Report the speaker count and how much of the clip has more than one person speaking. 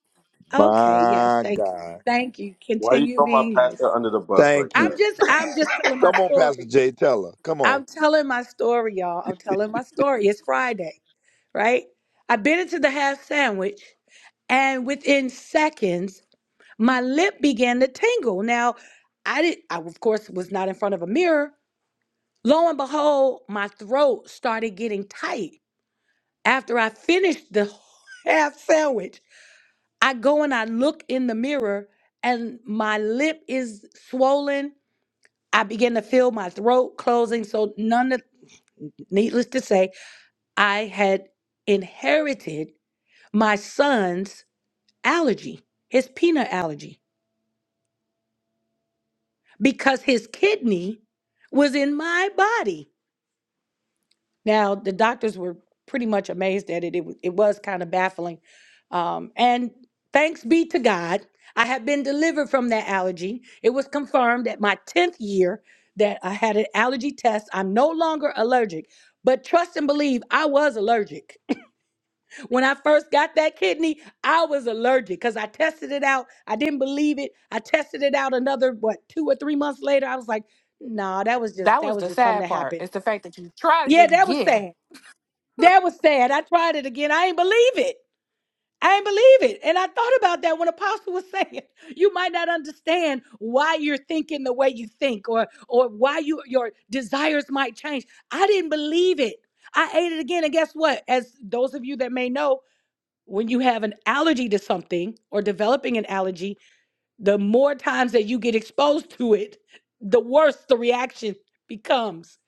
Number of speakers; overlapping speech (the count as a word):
four, about 5%